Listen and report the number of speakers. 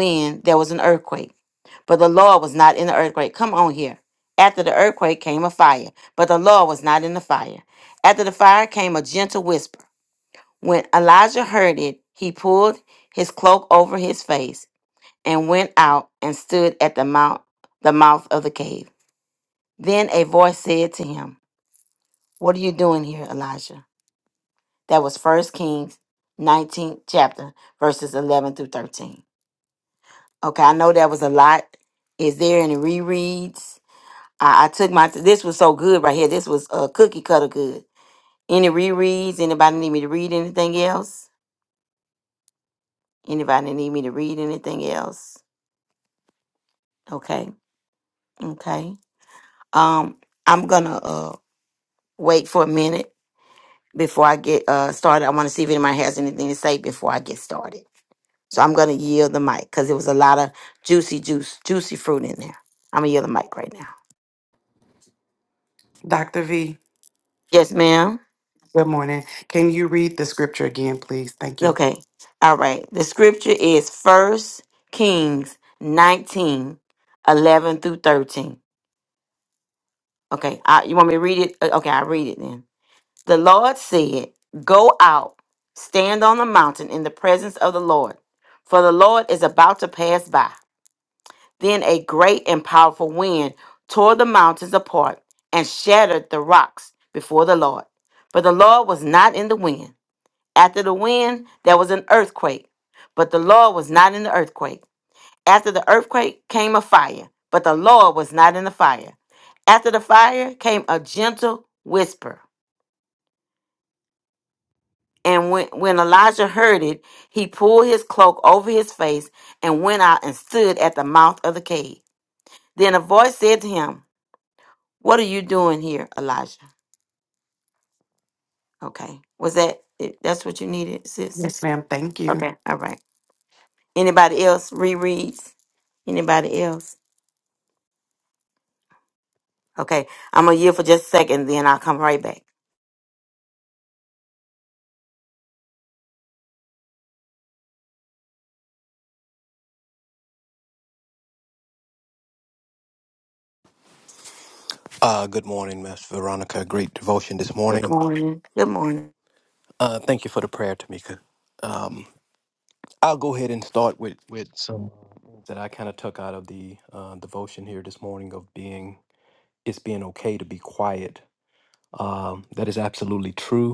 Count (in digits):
3